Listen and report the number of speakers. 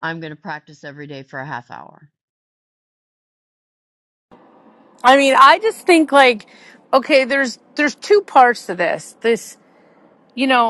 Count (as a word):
two